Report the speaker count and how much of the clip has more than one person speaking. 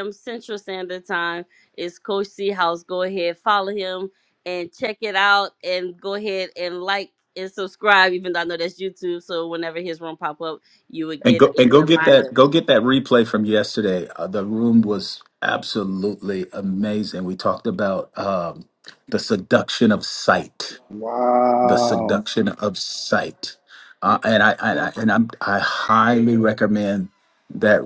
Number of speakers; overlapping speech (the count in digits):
3, about 5%